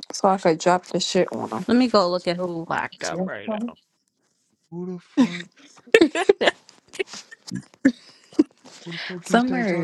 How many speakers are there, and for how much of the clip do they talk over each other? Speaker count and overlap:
3, about 9%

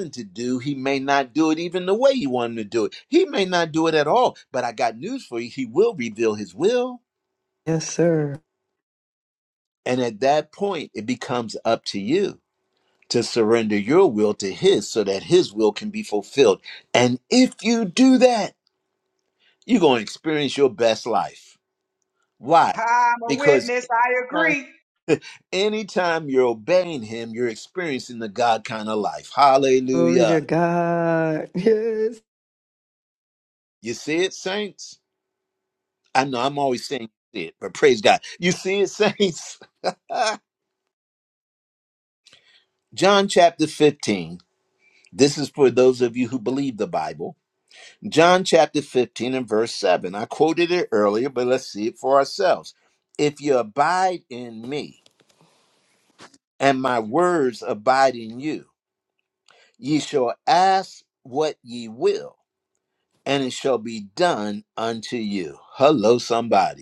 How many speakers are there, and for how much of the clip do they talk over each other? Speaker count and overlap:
3, about 2%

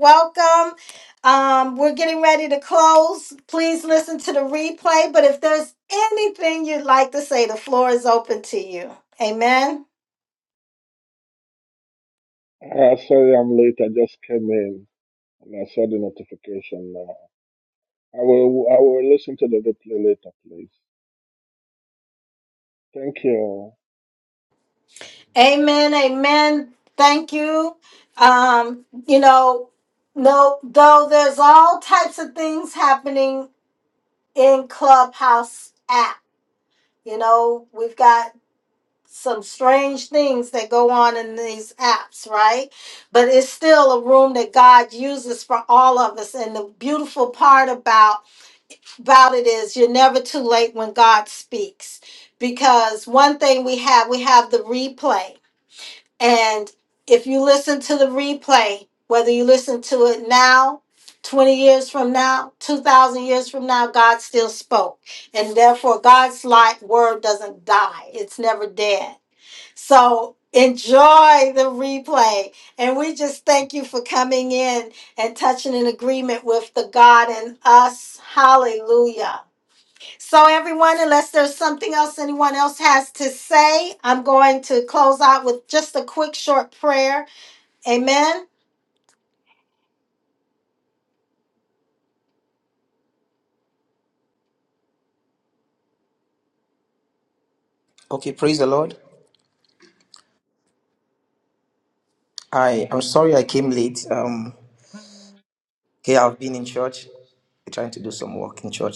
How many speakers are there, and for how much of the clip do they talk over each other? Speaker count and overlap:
3, no overlap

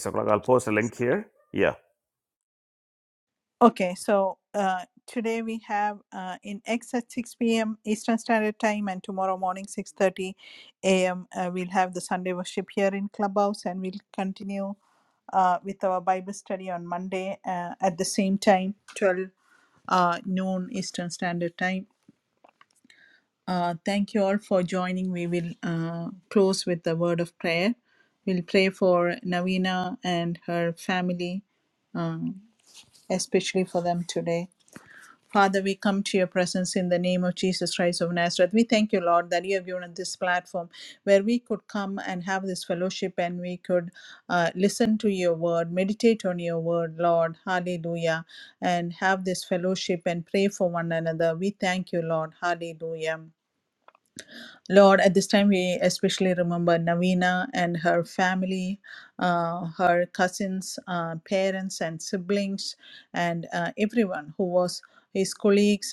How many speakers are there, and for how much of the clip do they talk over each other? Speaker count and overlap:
2, no overlap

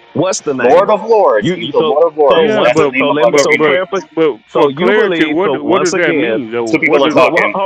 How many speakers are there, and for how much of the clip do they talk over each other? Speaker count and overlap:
3, about 68%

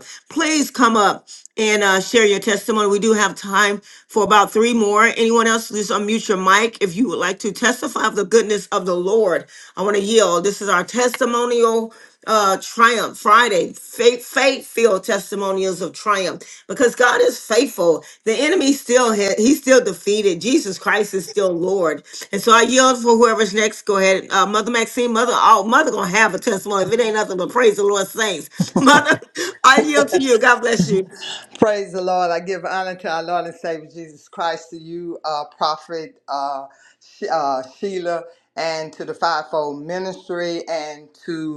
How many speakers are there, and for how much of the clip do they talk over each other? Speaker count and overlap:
2, no overlap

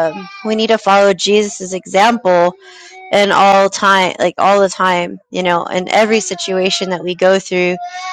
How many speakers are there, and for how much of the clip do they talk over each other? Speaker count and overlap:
1, no overlap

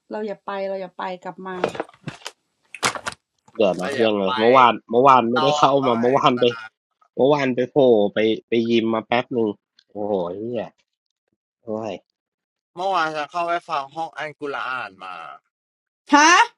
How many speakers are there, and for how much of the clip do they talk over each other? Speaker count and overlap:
3, about 10%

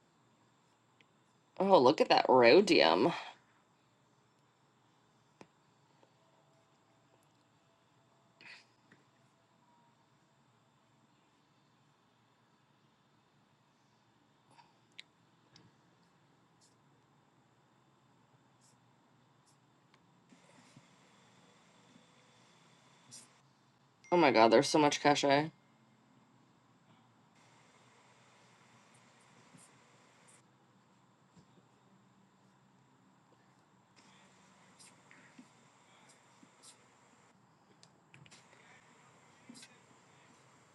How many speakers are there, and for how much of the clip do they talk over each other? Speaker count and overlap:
1, no overlap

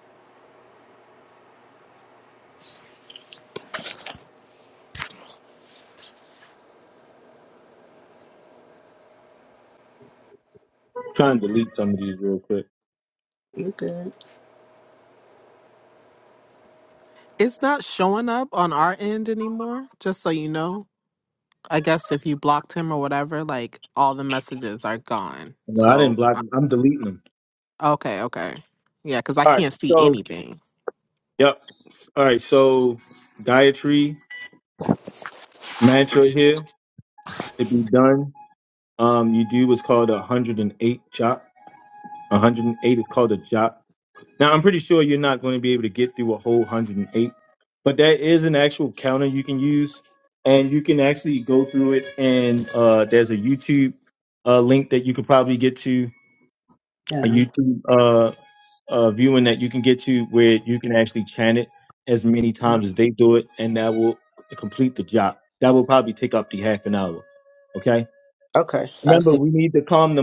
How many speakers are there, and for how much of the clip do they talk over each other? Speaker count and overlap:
3, about 3%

